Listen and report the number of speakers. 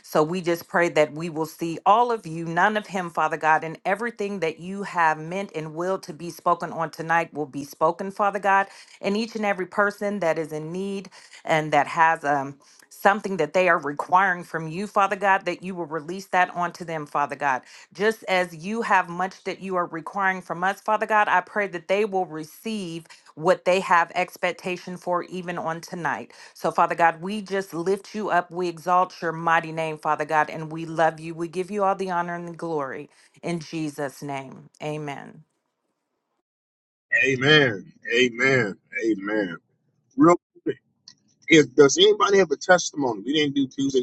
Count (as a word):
two